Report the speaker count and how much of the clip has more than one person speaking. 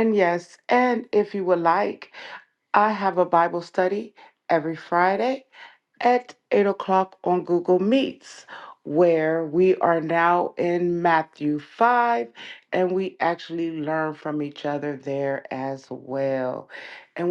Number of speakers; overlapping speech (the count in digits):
1, no overlap